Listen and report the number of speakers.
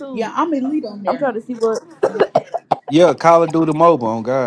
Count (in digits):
3